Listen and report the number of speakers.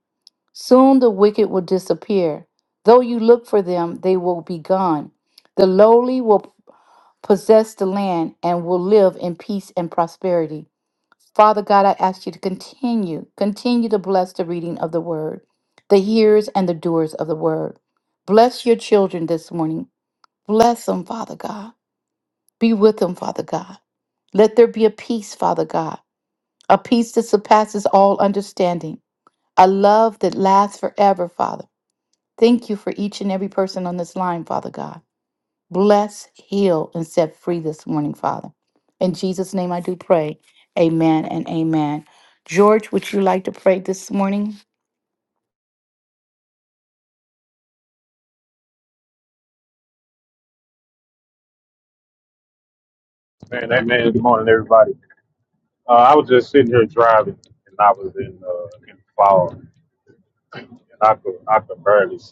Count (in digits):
2